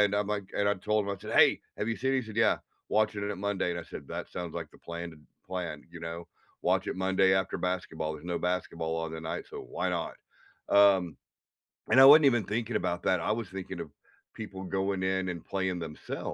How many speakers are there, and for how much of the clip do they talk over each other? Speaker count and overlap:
one, no overlap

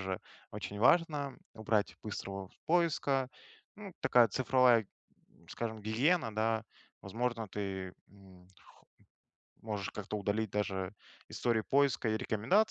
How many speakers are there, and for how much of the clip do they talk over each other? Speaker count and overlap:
one, no overlap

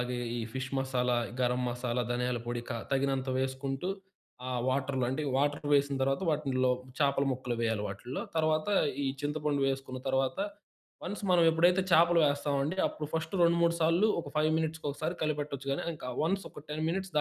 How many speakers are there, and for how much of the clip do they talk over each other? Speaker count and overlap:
one, no overlap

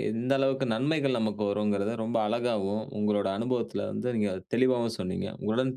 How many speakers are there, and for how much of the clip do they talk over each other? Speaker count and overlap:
one, no overlap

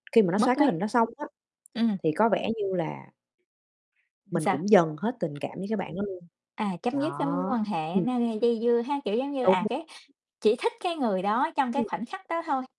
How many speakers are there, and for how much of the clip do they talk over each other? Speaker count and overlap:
two, about 13%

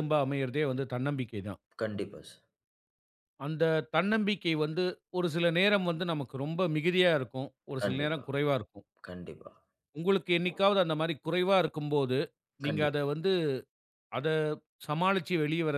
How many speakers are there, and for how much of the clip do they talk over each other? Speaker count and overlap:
two, about 5%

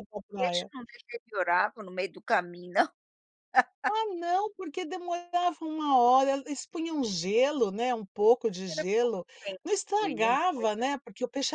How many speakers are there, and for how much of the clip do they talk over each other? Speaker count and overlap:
two, about 2%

